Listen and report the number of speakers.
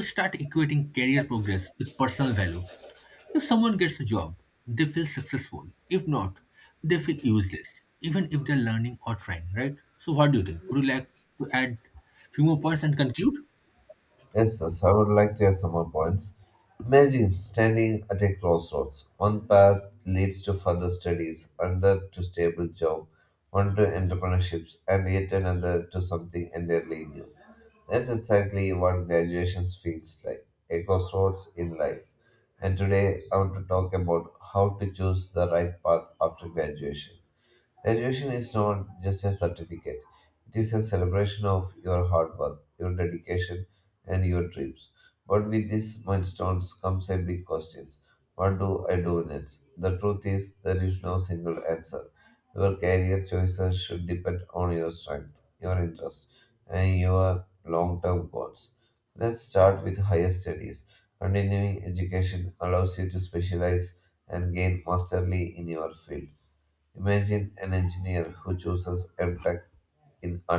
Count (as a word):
two